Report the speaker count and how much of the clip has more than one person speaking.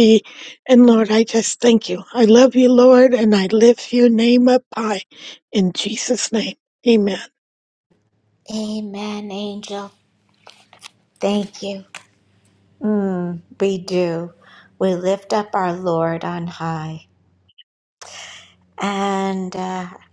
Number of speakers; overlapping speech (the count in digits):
2, no overlap